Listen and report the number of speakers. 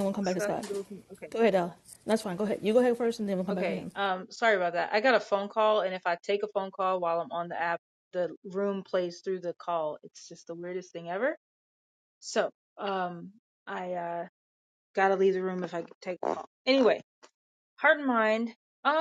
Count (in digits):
2